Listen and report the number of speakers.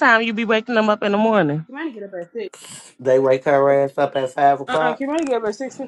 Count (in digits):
3